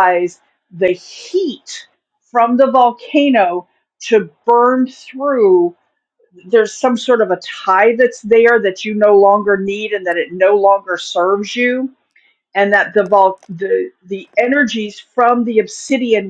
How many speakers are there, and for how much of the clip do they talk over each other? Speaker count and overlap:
1, no overlap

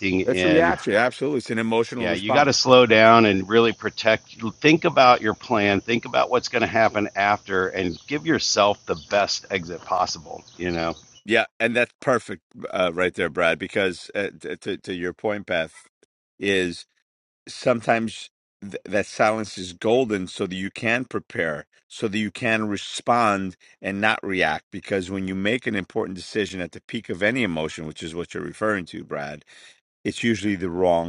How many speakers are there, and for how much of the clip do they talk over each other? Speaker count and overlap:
2, about 3%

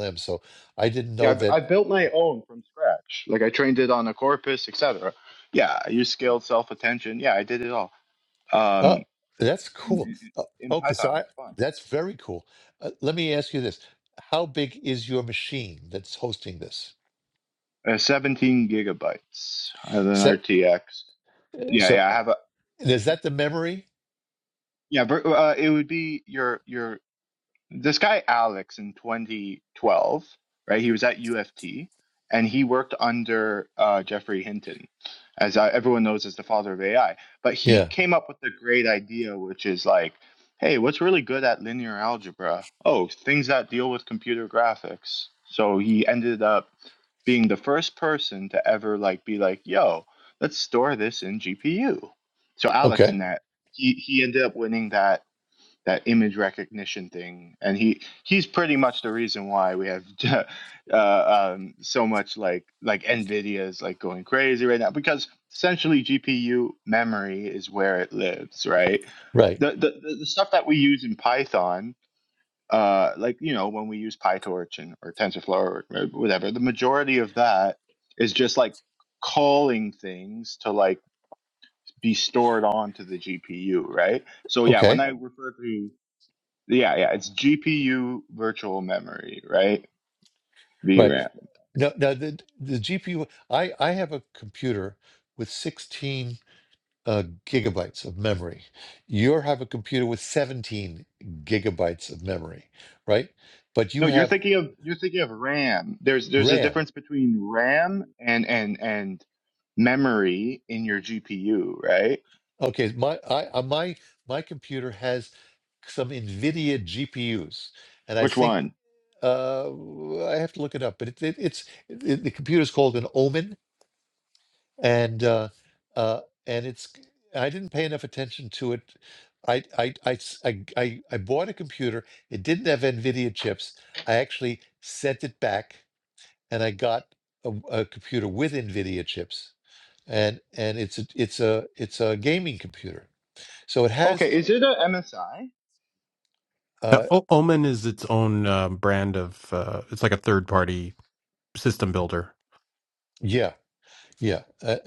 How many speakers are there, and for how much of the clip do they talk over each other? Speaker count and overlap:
3, about 3%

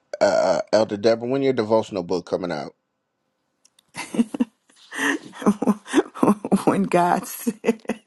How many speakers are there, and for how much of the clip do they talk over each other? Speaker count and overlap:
2, no overlap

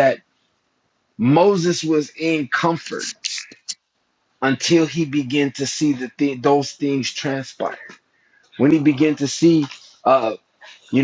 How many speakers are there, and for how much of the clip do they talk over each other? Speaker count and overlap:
1, no overlap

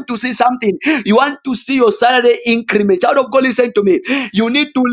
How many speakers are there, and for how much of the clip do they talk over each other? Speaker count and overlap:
1, no overlap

